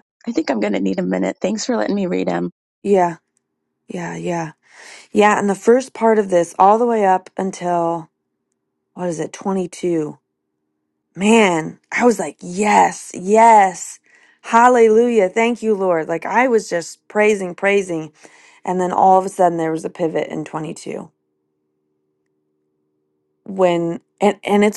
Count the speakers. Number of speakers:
2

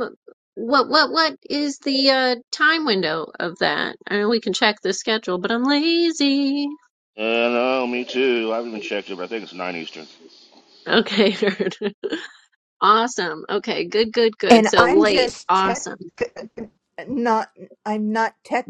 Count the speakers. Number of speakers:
3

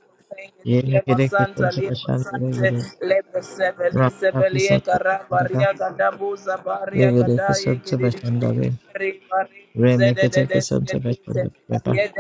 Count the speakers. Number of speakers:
2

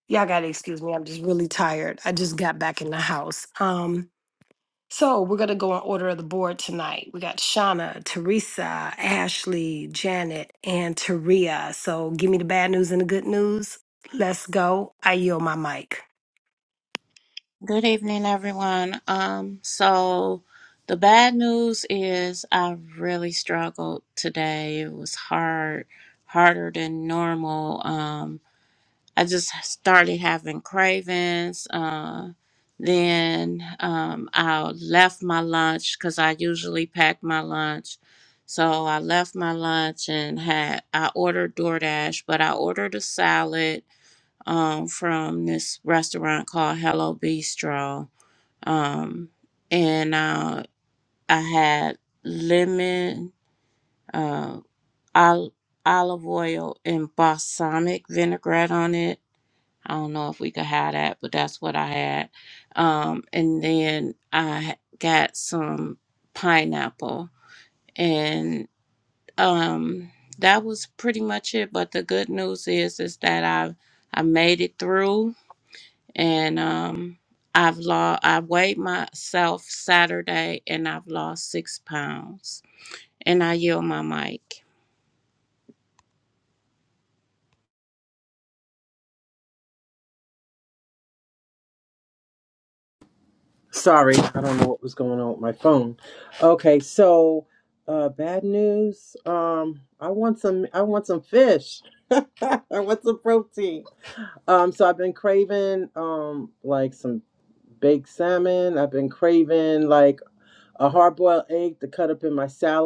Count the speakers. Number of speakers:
3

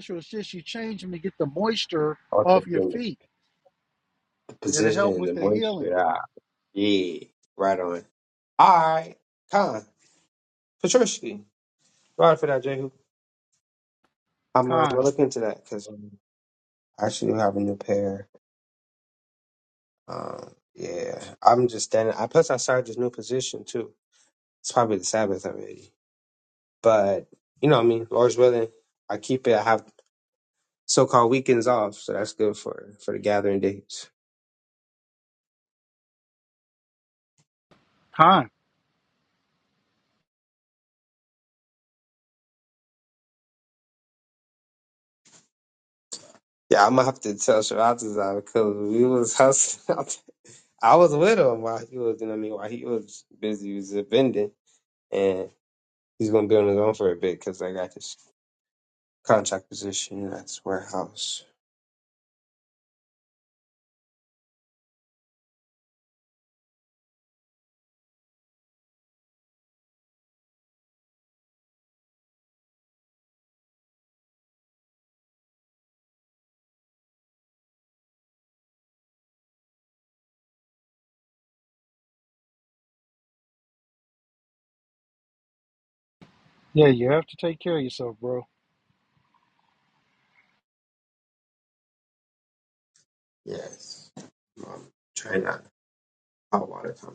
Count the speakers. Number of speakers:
2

